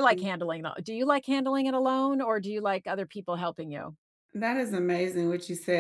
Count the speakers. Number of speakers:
two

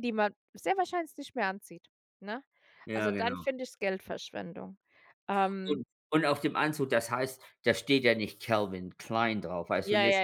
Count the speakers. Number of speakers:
two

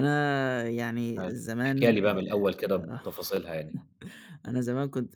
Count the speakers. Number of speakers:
two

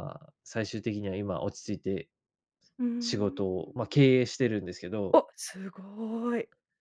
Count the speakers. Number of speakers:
two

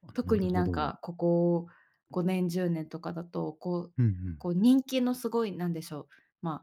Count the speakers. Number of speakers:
two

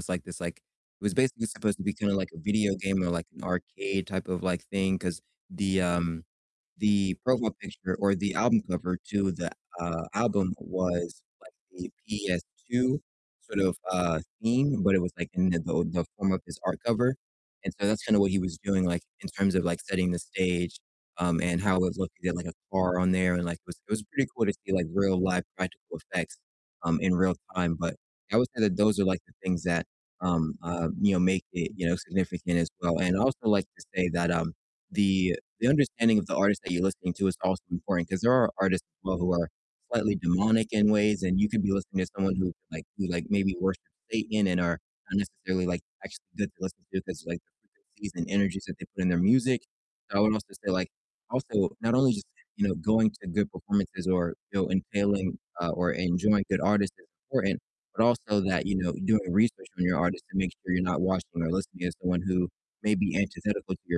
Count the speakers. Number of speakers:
one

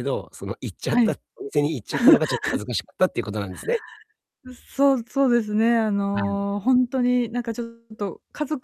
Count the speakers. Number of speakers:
two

